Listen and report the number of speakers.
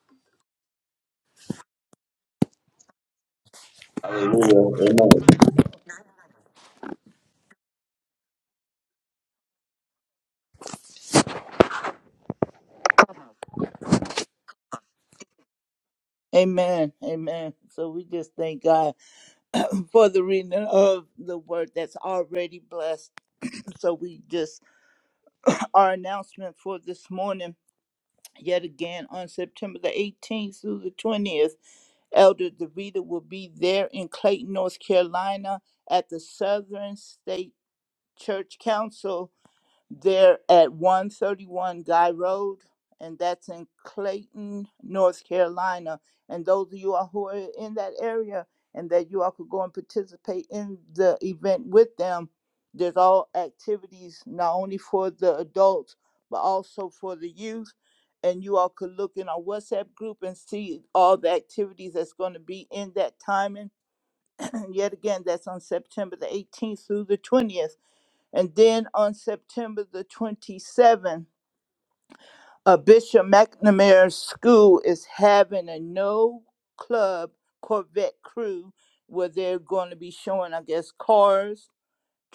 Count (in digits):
2